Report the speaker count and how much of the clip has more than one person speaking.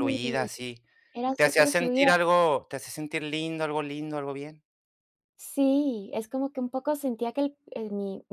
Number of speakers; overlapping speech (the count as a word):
two, about 13%